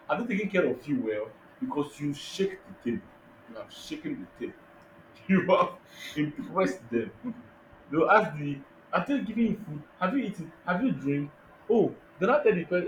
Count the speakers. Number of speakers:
1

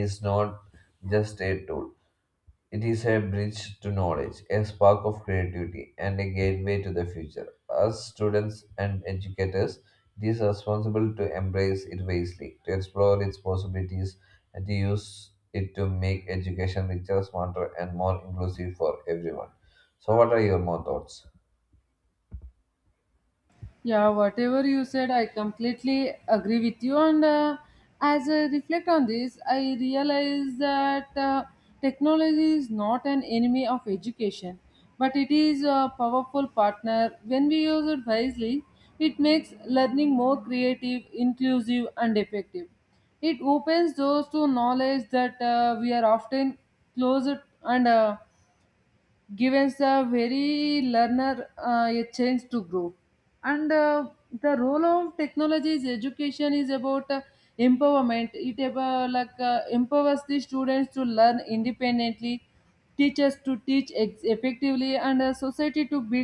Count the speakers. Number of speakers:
2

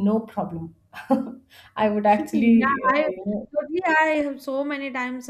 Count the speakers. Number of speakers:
2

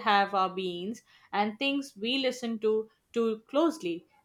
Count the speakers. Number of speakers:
1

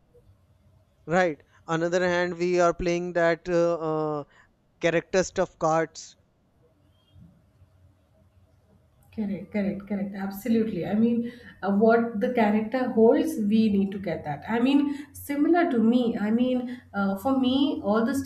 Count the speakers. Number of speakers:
2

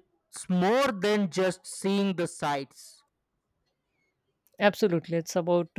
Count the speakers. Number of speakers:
2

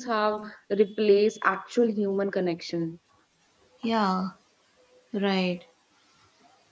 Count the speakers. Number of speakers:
2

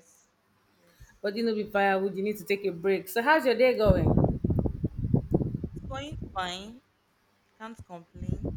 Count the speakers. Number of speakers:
2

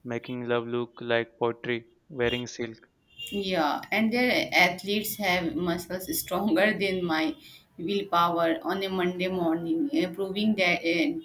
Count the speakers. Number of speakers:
2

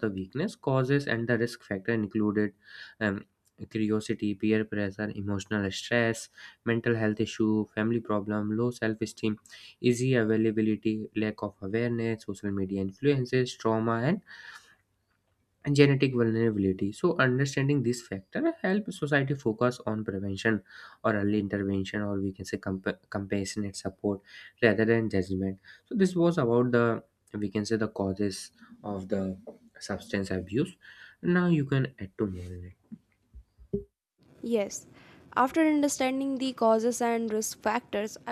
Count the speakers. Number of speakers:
2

